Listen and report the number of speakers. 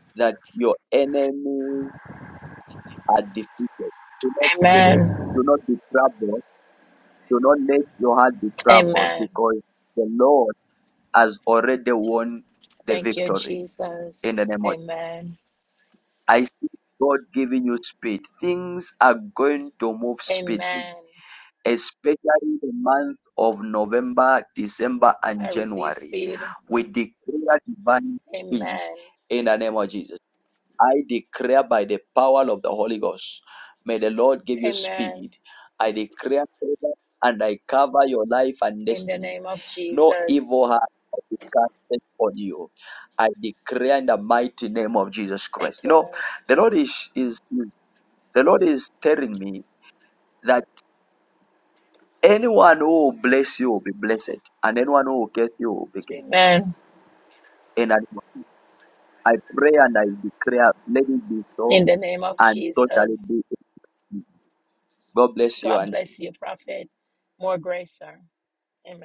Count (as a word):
two